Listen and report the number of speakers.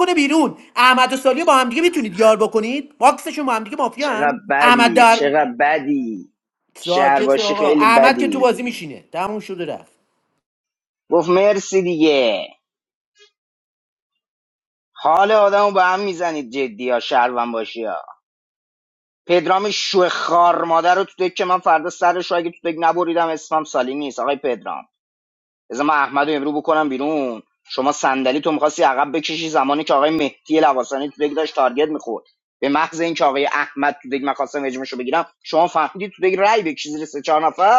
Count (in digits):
2